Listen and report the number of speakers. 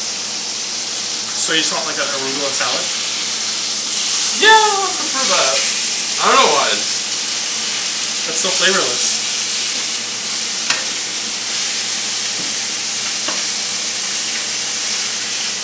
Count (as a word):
two